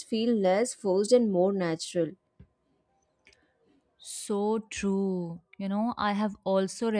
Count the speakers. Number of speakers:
two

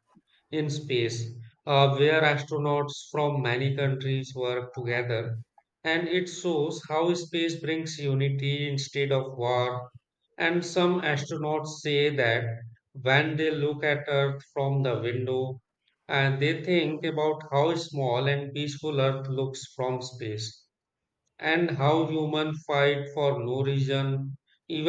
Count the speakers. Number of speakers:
one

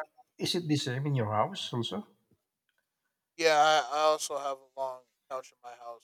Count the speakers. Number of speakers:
two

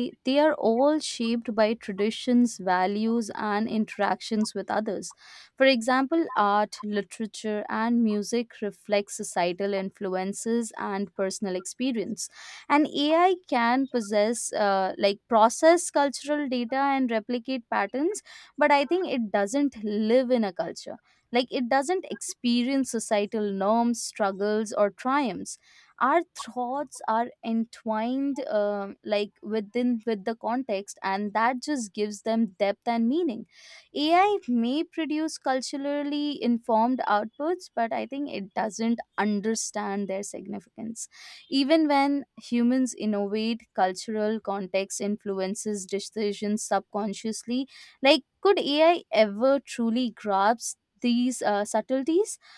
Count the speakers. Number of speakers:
one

